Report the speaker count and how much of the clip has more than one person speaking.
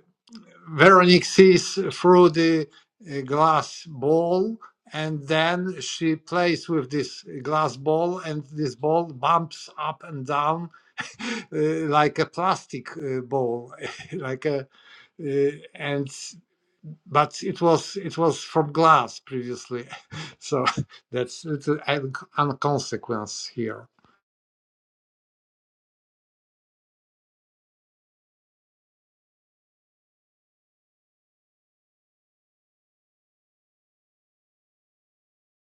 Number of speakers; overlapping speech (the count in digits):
1, no overlap